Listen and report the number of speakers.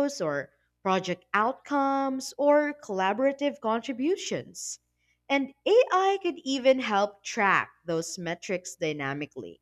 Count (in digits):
1